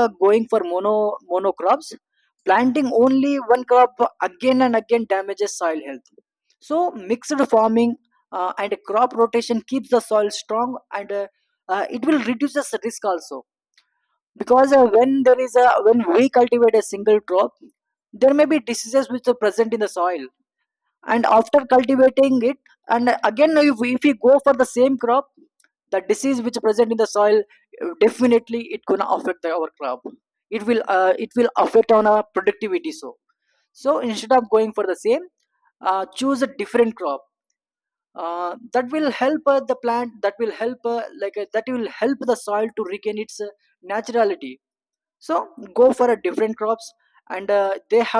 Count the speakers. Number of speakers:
1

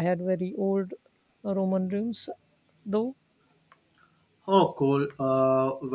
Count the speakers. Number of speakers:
2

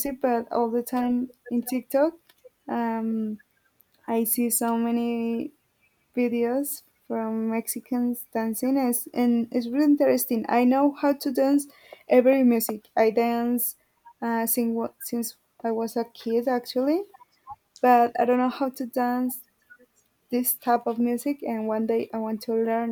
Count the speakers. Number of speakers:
1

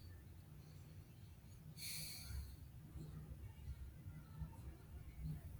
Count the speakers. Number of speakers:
0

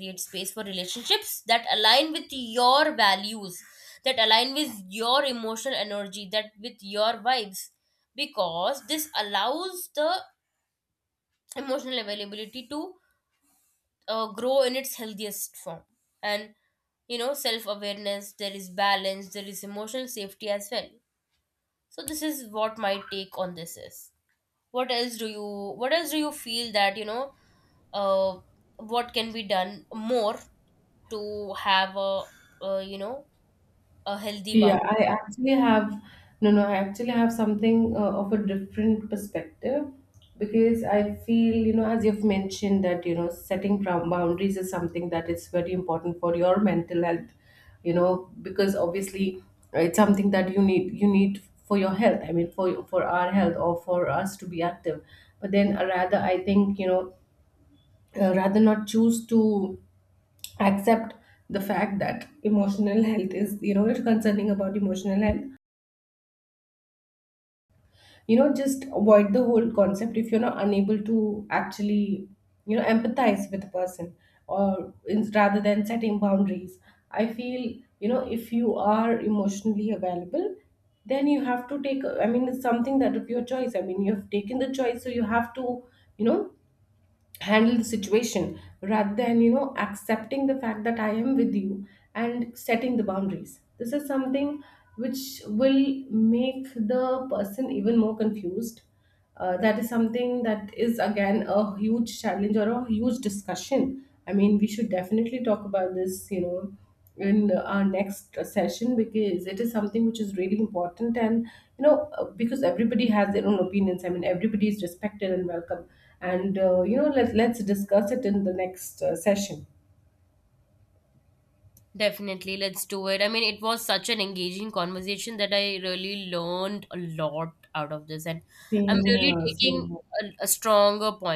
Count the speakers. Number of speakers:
2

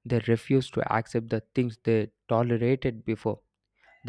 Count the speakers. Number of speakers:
1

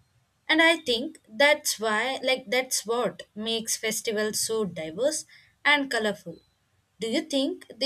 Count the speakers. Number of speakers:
1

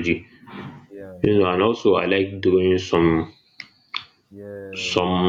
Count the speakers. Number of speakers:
2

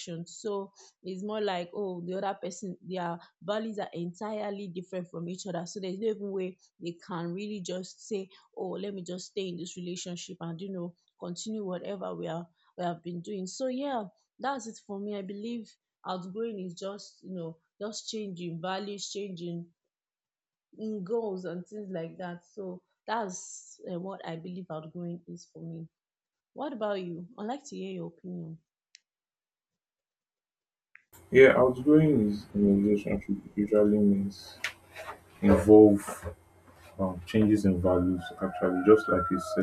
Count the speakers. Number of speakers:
2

